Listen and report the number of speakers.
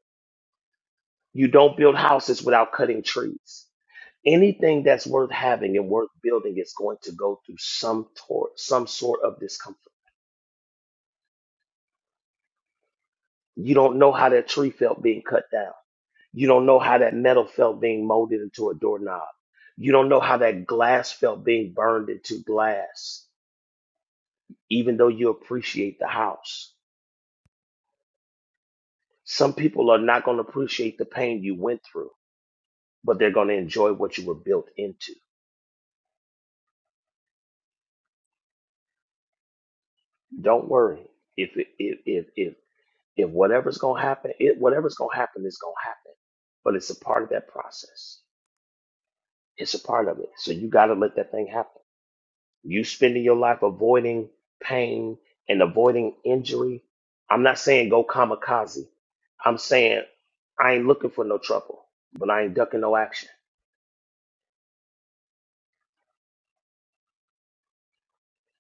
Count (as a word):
one